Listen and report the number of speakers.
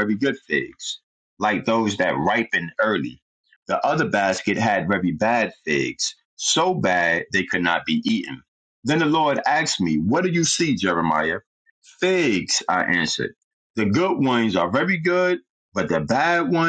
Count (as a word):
one